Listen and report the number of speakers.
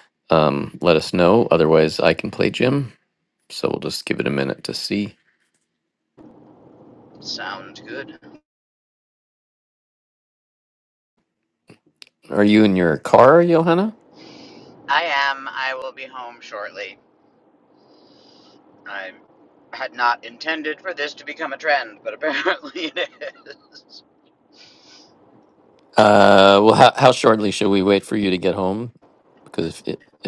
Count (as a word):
two